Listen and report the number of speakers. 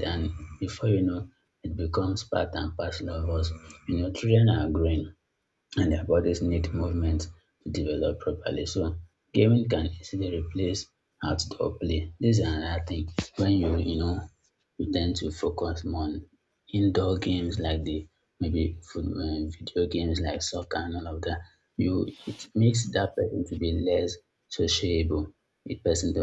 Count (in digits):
1